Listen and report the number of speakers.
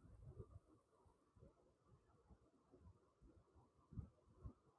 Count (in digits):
0